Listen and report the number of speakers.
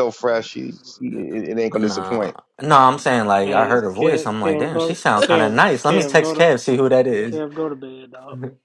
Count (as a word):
three